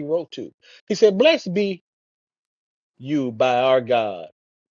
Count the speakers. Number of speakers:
1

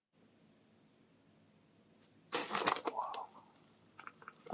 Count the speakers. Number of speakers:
0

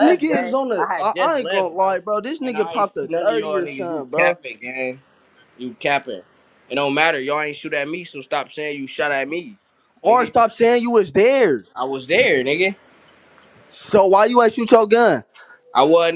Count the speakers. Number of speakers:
2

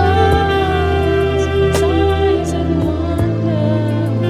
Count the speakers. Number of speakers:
0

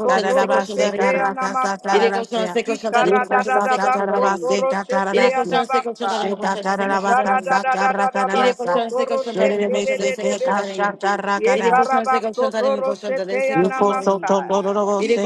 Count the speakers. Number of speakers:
3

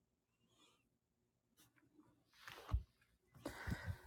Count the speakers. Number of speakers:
0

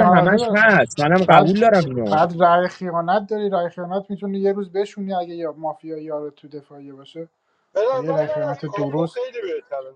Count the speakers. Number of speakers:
3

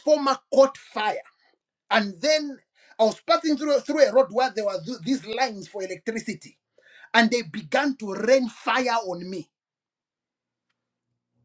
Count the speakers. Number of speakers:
1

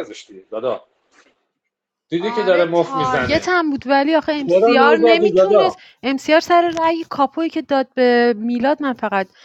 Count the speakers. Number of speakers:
2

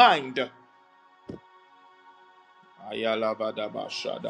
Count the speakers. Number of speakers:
1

